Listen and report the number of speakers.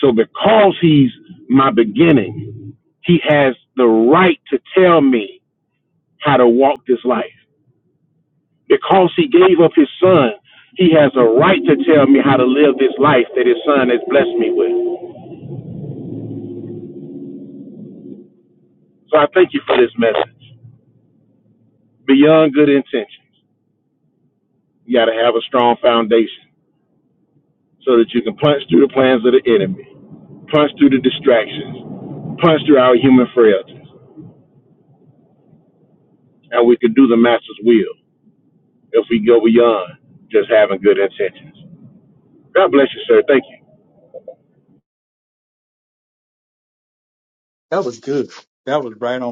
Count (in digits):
2